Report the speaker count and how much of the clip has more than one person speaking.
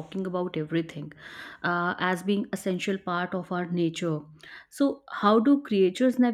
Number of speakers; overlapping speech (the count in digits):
1, no overlap